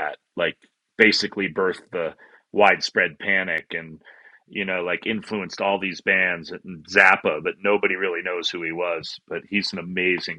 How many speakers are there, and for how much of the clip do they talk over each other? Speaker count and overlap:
one, no overlap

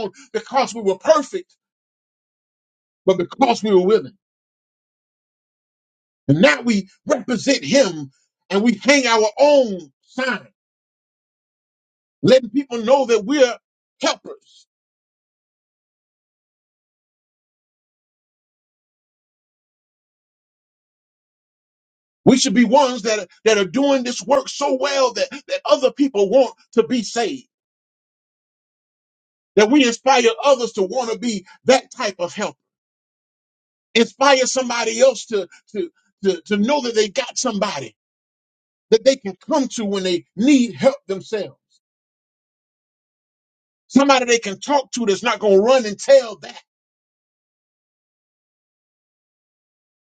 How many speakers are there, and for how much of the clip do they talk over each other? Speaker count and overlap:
one, no overlap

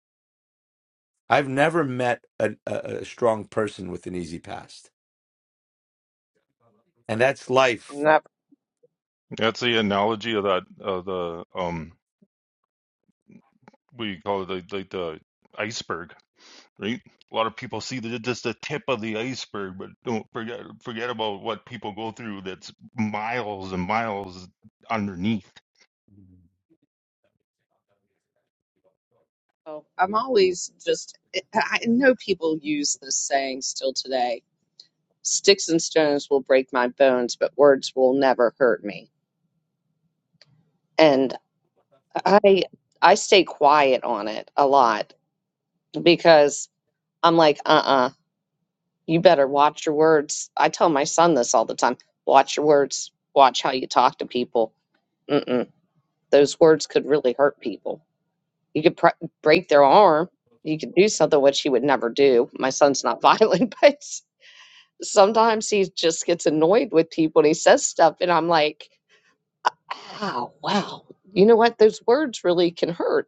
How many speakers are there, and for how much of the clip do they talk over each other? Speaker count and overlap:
three, no overlap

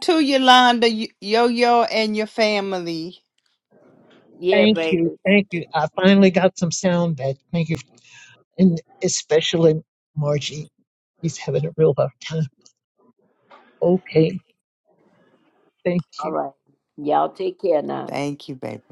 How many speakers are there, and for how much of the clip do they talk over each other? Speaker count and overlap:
three, about 3%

